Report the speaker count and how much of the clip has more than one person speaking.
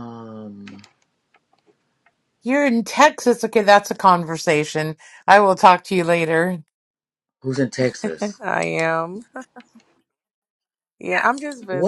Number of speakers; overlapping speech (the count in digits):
3, about 1%